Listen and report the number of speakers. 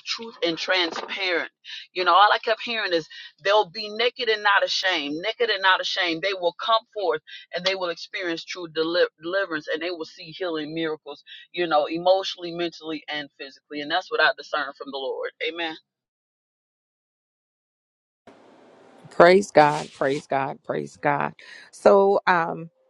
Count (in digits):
2